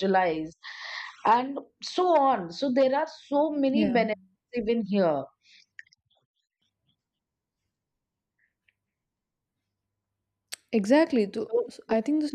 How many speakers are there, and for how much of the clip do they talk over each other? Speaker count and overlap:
2, about 4%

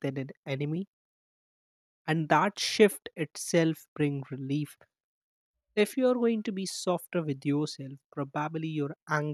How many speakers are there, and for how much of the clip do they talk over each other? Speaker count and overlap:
1, no overlap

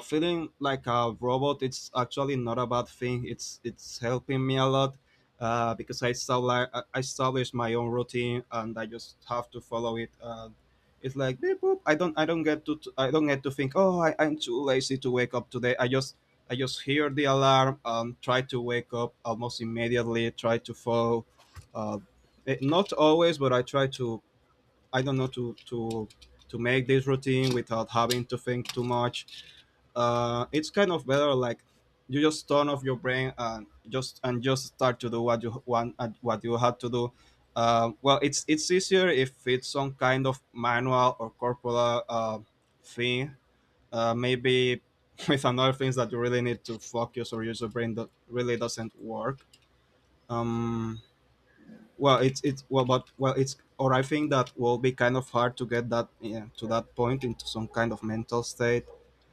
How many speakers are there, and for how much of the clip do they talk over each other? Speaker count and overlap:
1, no overlap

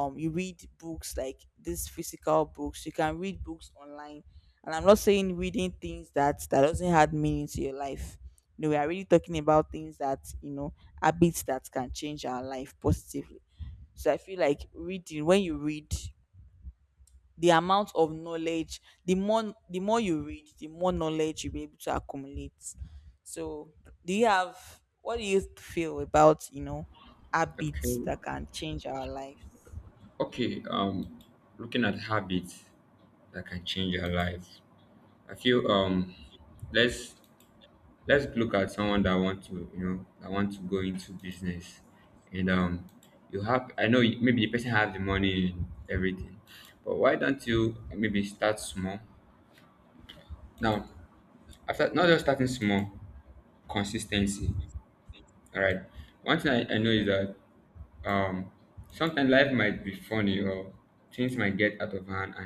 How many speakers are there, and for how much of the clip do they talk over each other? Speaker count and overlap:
2, under 1%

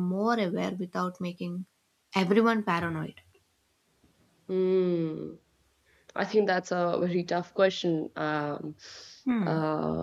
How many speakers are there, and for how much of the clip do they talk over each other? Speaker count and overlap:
2, about 2%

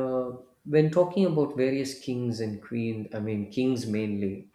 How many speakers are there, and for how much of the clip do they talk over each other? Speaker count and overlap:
1, no overlap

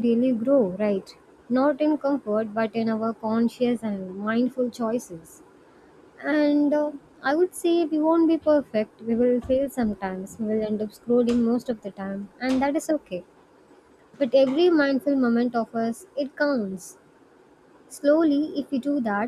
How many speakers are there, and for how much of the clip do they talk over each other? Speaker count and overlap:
1, no overlap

